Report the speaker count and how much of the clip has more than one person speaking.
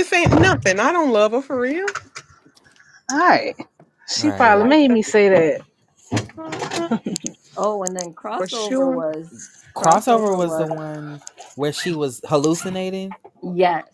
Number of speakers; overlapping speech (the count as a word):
four, about 17%